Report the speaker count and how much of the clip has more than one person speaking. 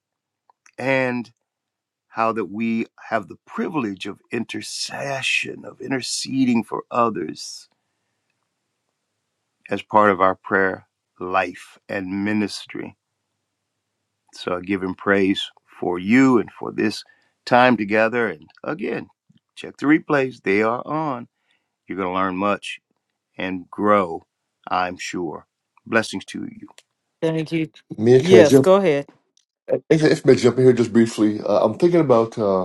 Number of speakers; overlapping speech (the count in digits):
3, about 1%